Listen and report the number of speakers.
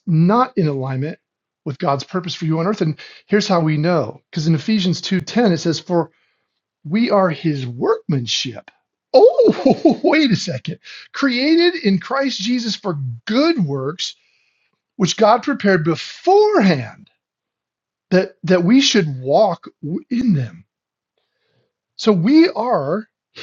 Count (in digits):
1